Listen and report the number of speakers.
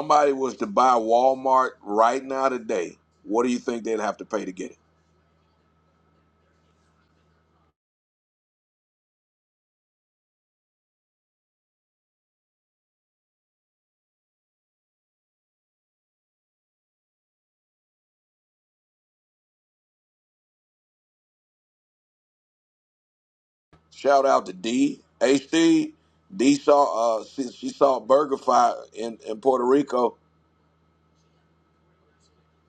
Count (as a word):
one